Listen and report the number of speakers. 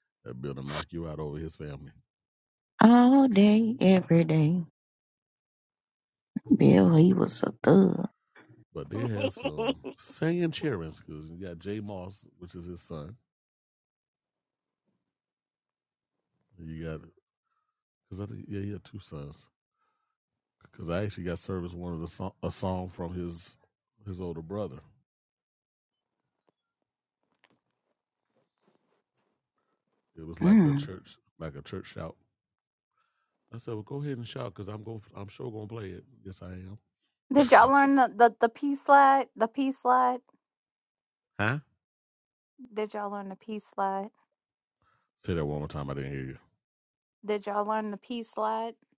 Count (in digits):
3